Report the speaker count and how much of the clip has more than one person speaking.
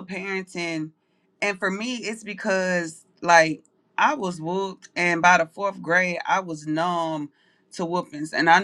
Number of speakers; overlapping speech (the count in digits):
1, no overlap